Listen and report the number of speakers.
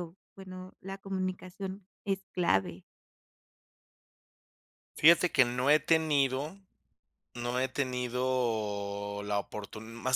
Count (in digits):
2